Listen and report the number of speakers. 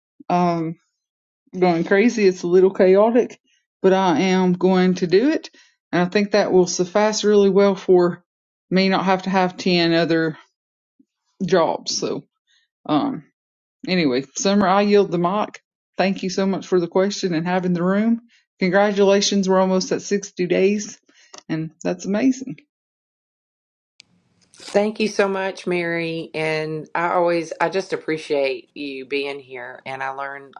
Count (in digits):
2